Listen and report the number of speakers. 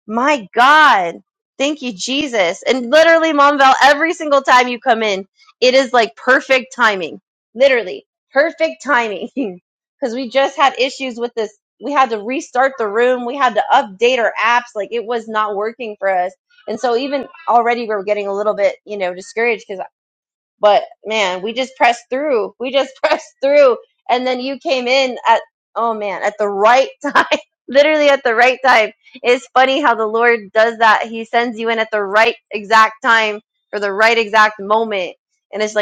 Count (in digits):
1